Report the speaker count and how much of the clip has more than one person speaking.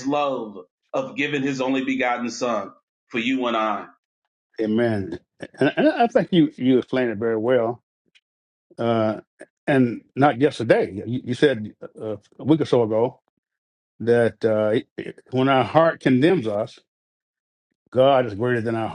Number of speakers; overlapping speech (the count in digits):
2, no overlap